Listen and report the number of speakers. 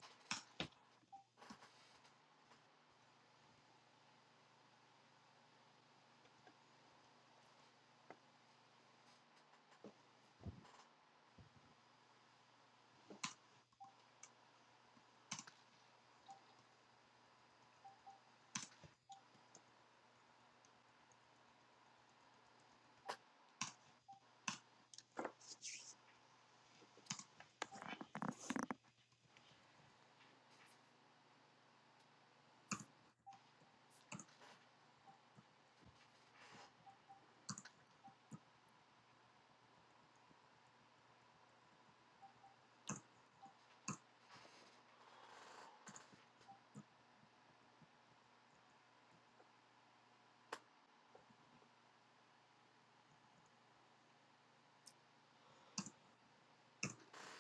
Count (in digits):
0